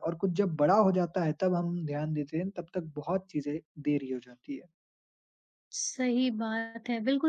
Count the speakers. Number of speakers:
2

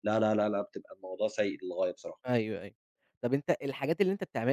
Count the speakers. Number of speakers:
2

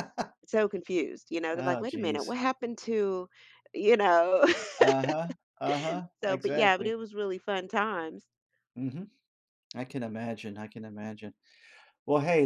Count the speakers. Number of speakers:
2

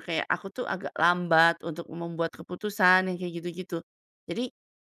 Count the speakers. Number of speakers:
1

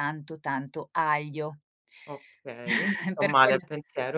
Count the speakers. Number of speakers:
2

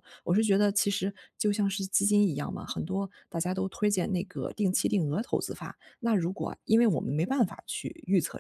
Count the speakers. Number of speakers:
1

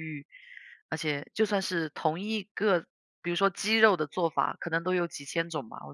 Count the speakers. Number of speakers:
1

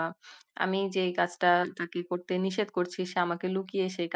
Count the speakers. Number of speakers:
1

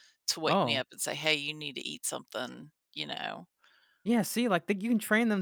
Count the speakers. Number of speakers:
2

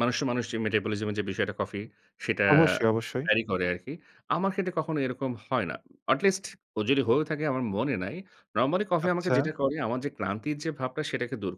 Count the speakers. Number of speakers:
2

